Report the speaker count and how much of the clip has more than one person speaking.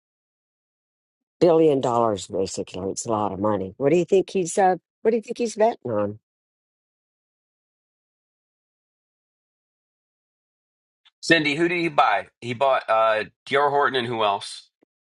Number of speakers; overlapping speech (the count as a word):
two, no overlap